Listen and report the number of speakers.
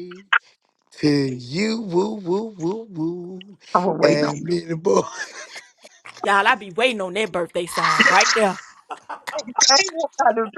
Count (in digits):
3